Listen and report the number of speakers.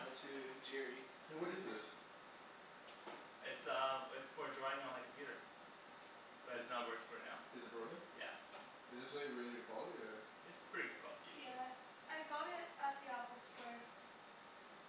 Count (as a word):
four